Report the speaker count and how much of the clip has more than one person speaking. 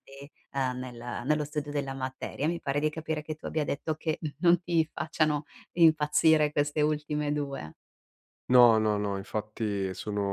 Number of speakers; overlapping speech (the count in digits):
2, no overlap